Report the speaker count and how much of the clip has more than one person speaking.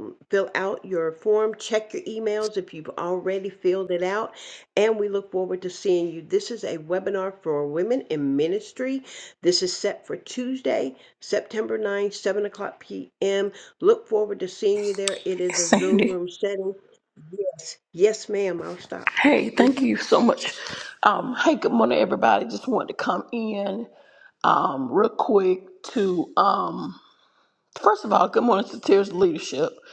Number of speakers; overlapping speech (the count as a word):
two, about 3%